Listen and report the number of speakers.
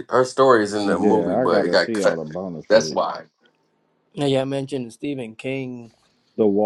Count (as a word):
three